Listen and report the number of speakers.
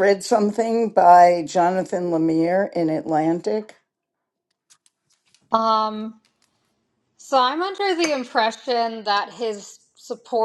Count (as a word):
two